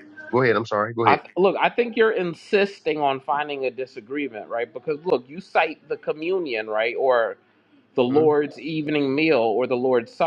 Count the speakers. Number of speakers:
2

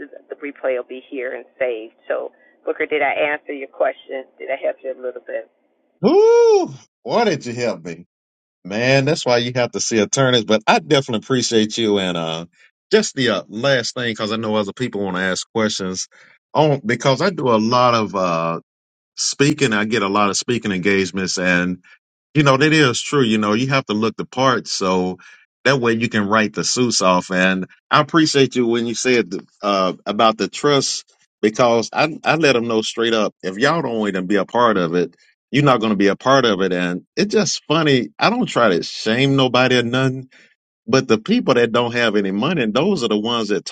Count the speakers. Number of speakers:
2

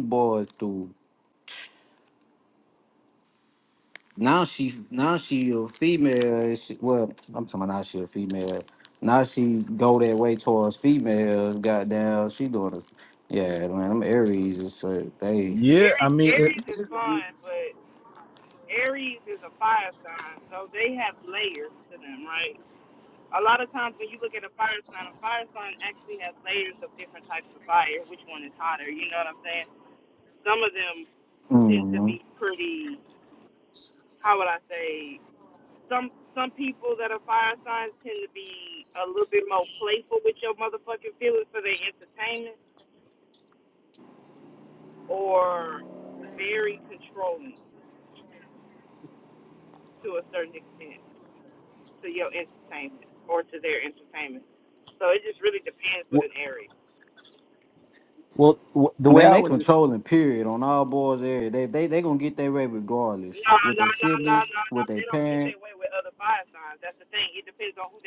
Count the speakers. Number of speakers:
3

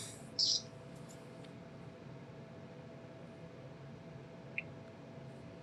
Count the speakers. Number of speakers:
0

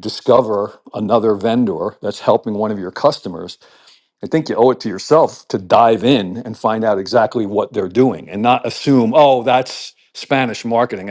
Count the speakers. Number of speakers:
1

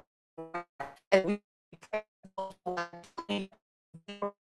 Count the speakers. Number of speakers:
0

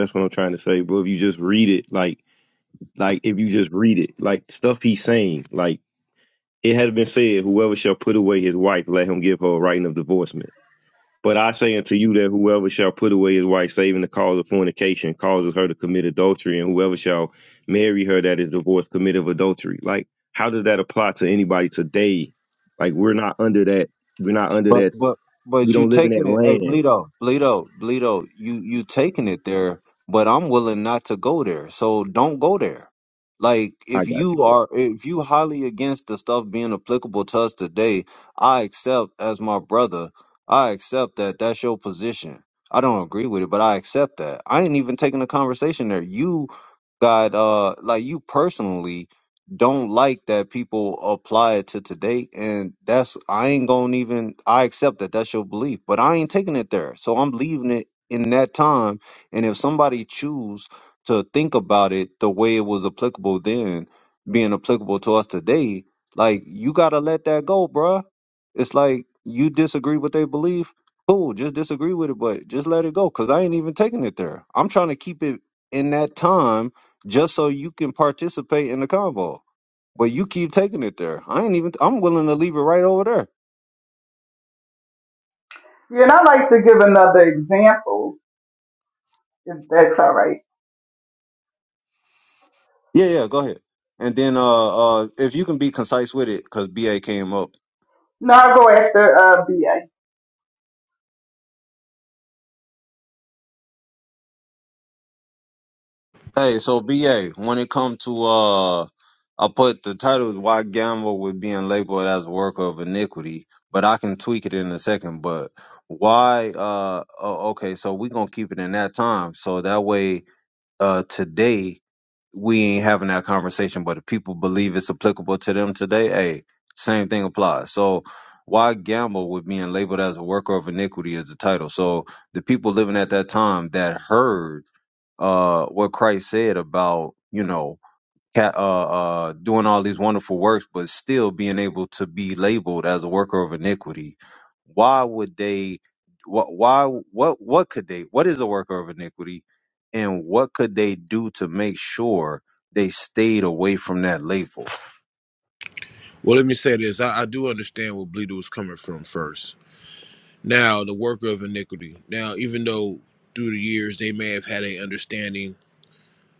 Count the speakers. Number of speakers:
4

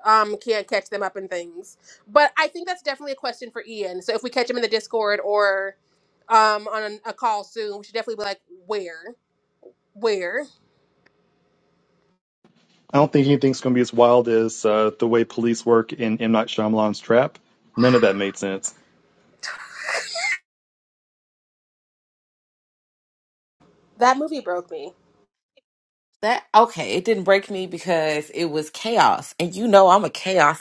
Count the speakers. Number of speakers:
3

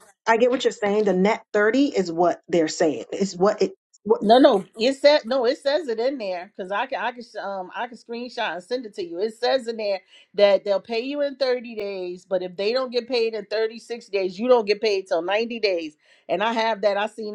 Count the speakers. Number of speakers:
2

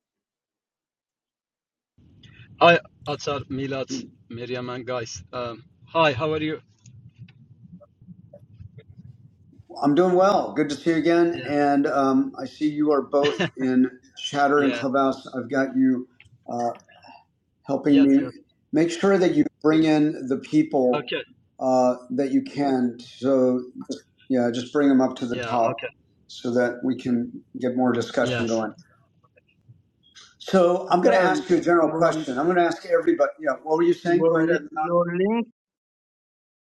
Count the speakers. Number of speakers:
3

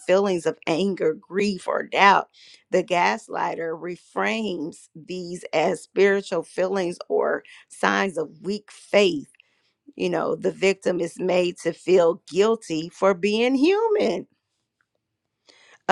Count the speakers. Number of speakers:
1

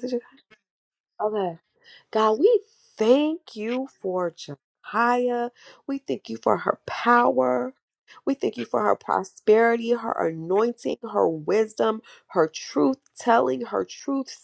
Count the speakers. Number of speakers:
1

